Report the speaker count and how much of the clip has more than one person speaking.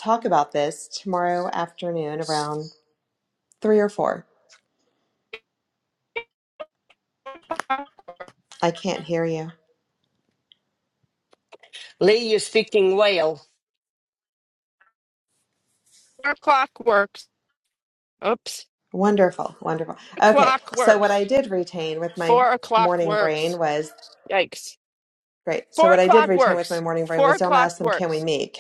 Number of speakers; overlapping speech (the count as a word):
three, about 12%